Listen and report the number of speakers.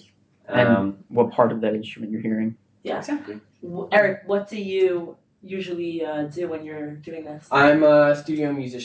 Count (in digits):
3